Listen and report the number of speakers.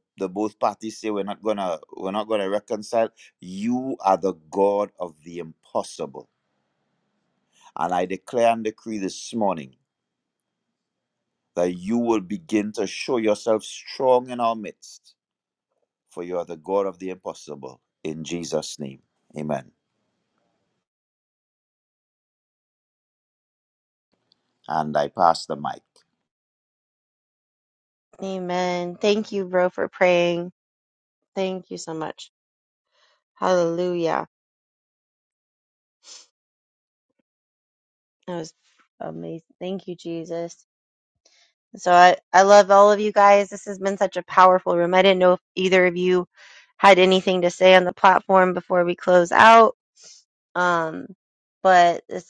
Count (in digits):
2